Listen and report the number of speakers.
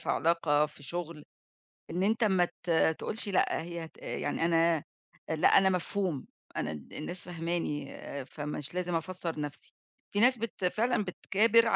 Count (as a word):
one